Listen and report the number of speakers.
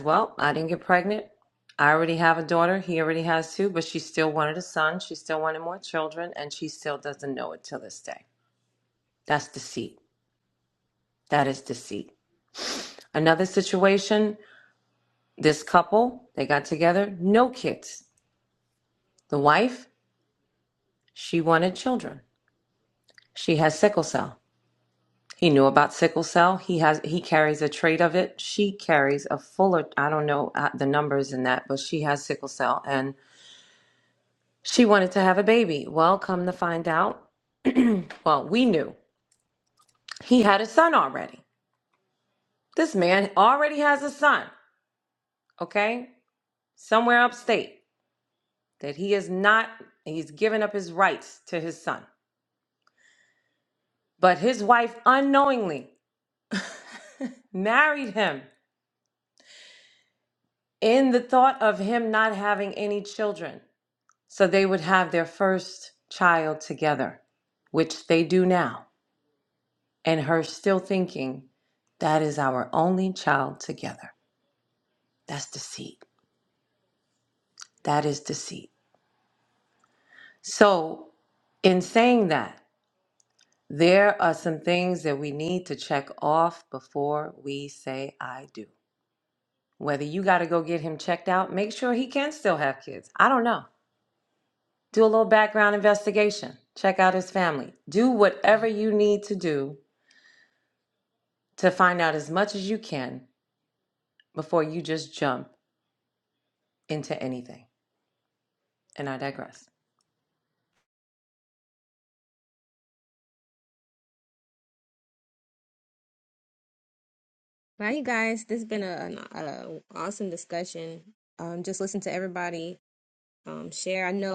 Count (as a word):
two